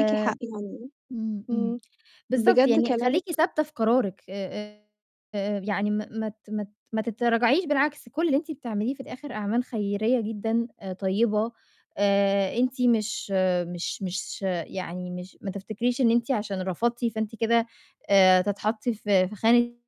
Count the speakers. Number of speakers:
2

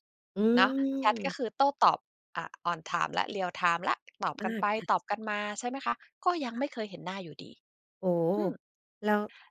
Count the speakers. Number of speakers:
2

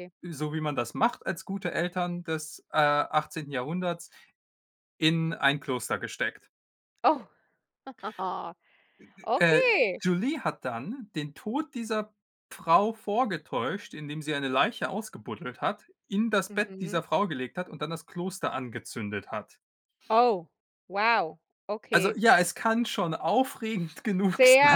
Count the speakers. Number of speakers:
2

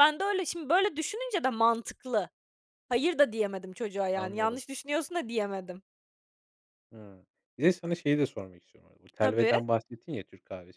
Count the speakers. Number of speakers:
2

